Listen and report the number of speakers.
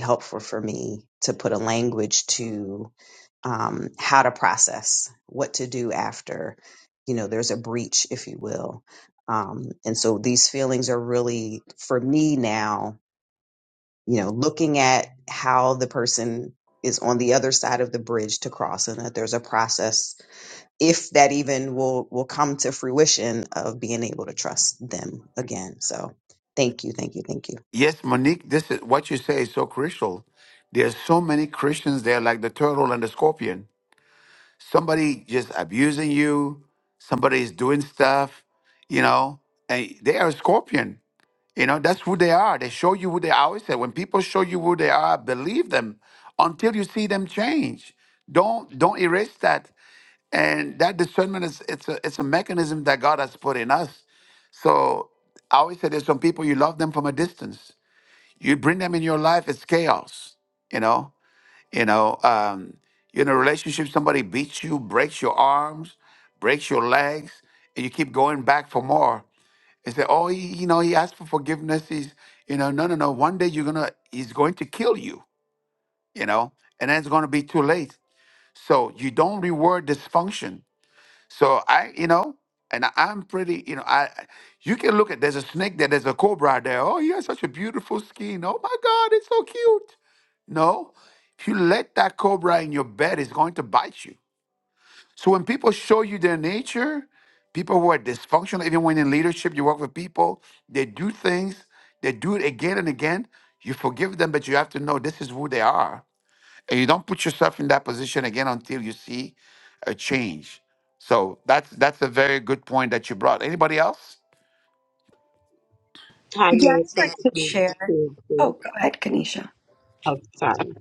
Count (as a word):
four